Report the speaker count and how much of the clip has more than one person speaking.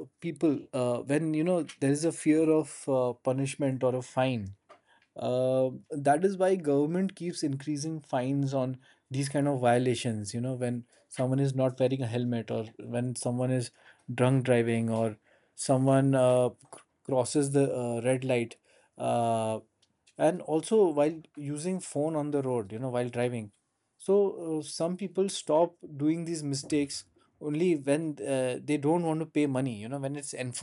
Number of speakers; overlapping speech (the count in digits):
1, no overlap